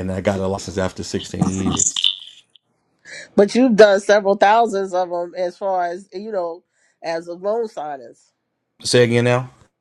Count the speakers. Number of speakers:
two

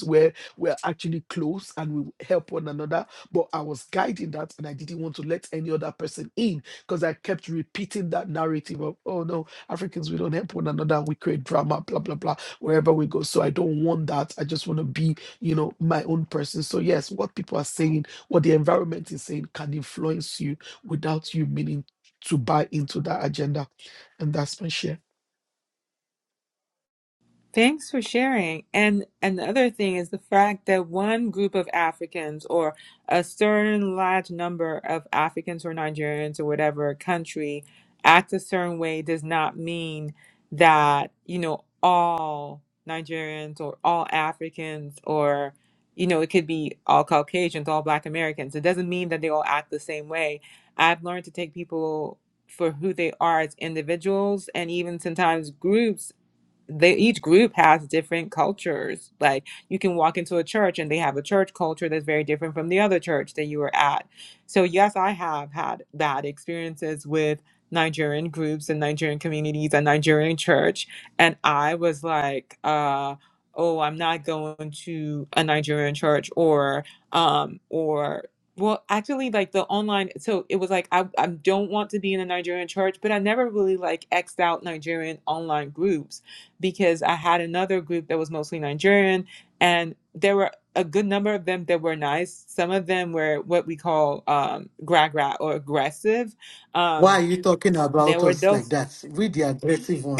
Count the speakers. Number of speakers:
three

